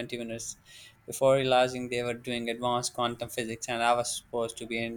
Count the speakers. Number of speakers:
one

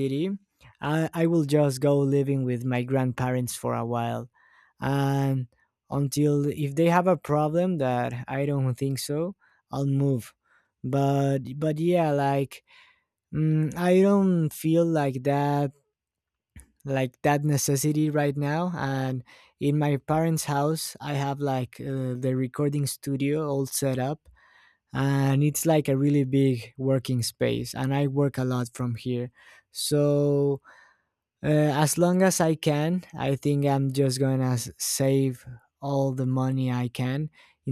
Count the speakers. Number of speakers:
one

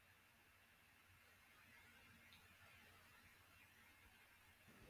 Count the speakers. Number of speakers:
zero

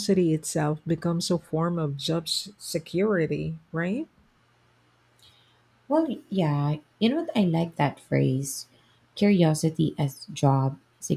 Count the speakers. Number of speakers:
two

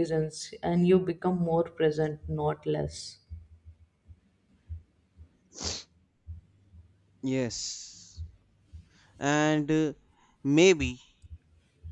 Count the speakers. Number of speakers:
two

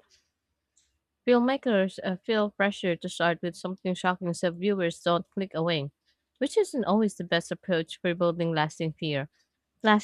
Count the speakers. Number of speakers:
one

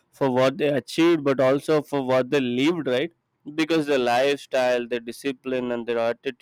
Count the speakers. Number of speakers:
one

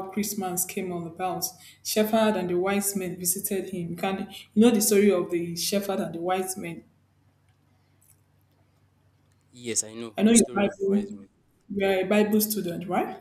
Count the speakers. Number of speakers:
two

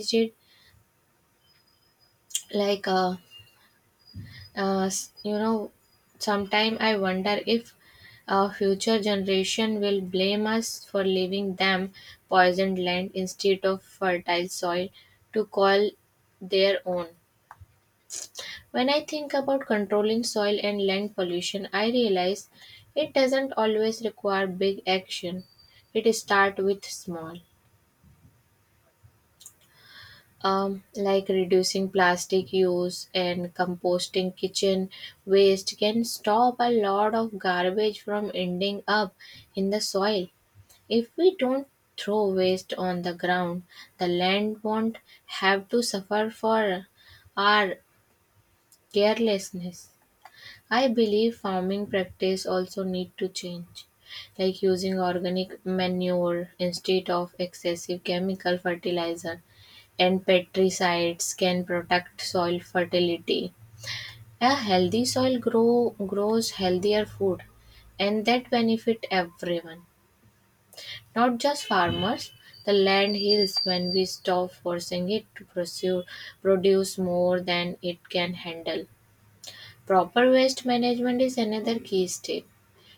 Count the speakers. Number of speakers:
one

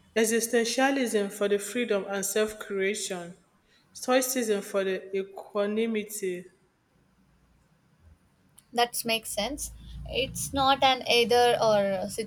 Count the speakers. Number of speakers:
two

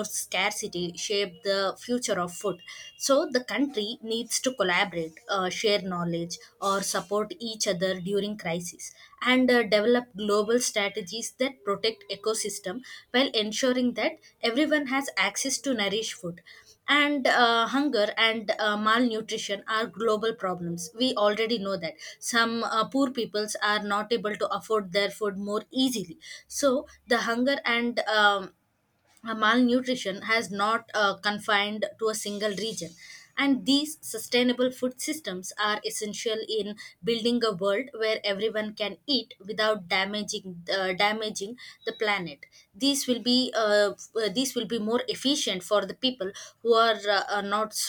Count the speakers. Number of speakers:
one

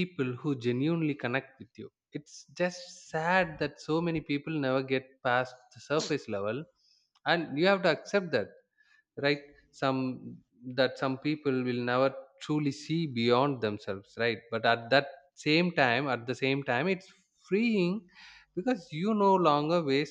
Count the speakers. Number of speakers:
one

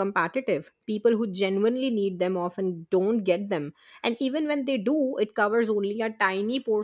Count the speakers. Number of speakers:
one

